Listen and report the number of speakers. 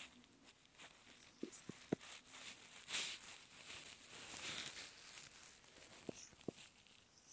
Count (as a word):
zero